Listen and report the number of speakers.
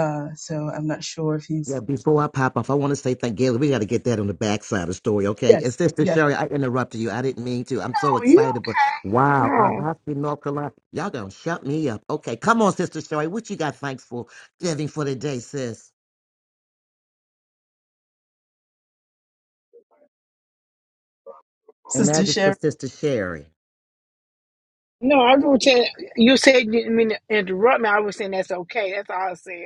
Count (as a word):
three